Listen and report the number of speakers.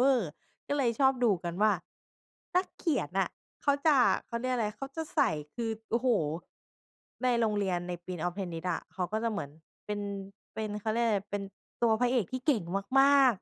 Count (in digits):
1